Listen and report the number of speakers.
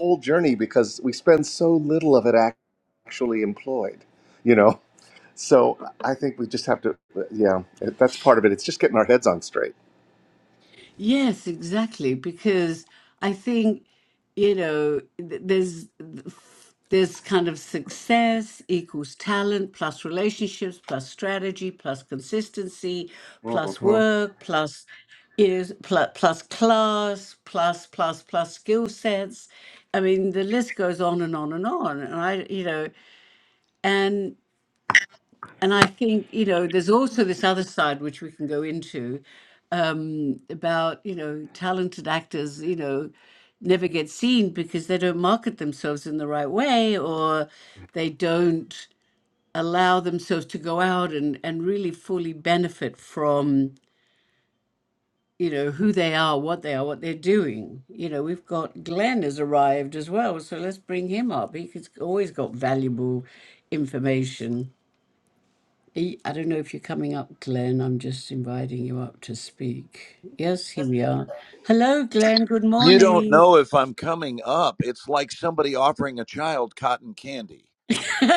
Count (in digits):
3